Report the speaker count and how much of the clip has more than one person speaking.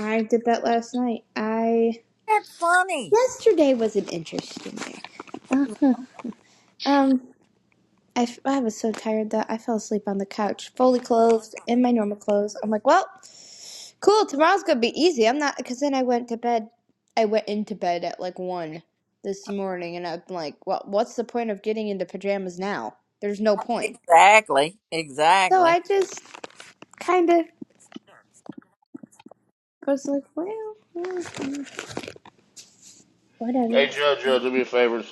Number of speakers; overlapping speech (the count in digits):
3, about 1%